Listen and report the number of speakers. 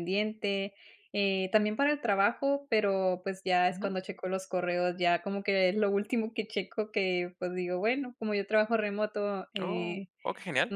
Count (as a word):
two